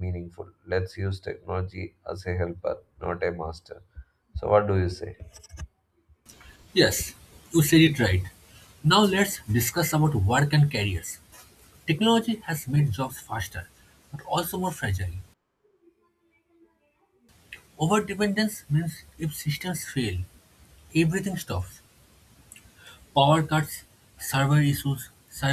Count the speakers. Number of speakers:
2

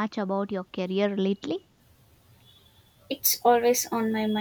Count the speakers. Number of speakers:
2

